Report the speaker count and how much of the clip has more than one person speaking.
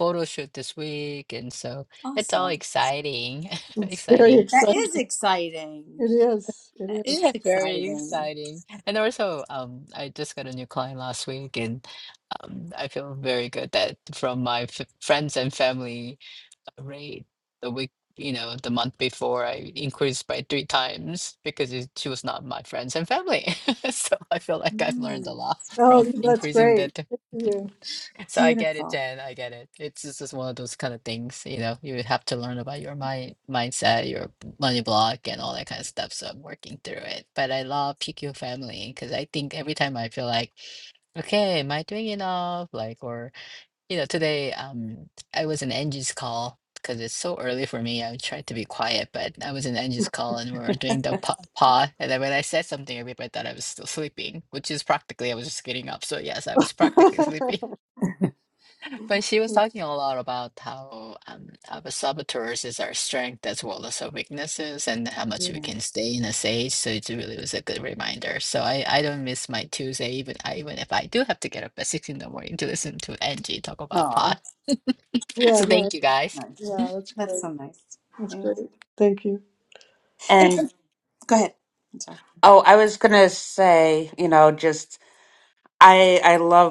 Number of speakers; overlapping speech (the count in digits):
4, about 8%